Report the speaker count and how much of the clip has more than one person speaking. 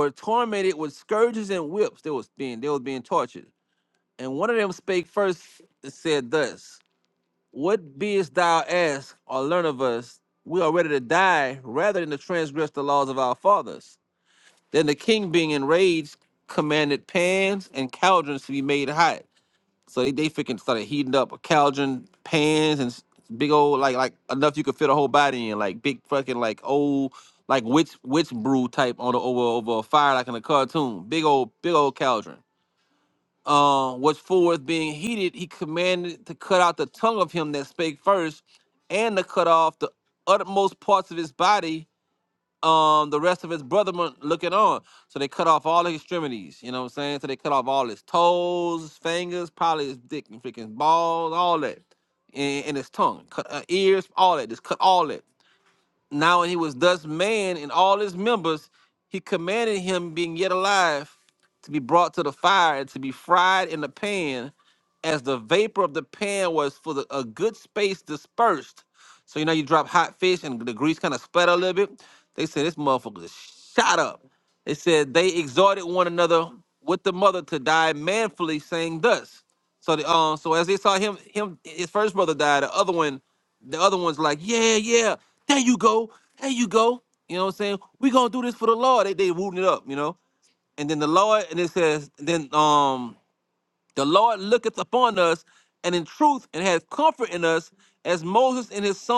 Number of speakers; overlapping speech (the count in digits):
1, no overlap